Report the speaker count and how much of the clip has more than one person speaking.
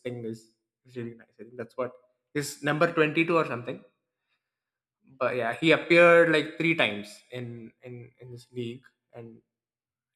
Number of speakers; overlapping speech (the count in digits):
1, no overlap